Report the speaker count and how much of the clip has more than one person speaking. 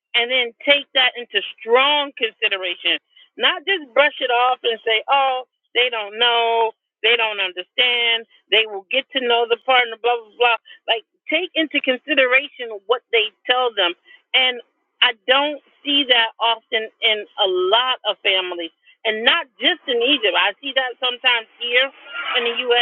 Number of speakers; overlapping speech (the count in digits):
1, no overlap